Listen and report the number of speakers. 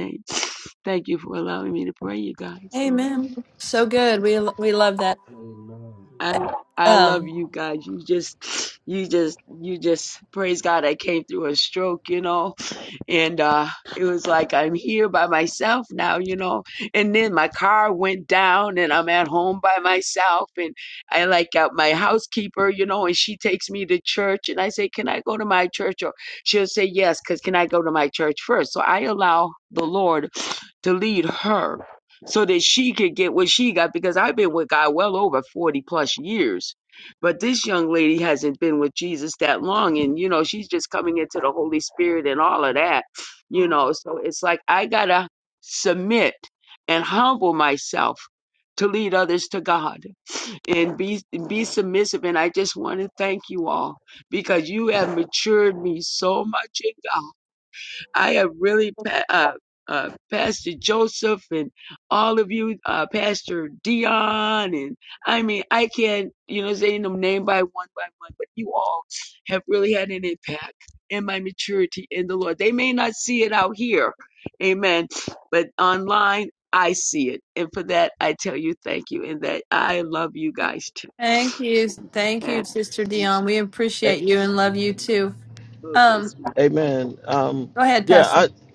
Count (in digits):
4